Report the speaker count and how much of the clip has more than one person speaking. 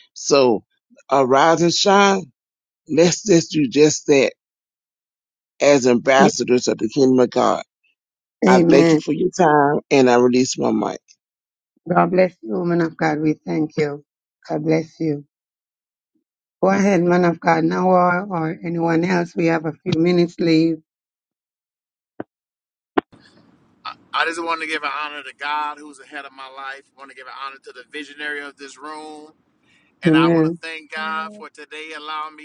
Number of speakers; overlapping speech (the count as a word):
three, about 4%